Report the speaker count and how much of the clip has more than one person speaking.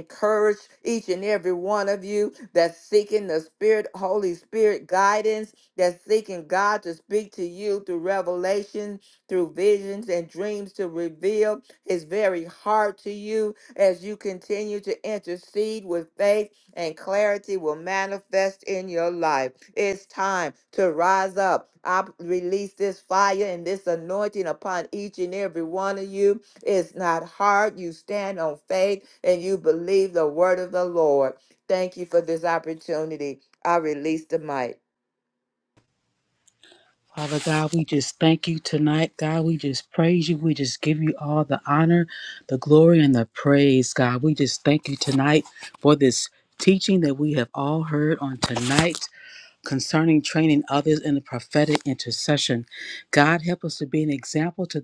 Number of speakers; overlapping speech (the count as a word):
two, no overlap